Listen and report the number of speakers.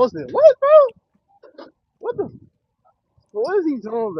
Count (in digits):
1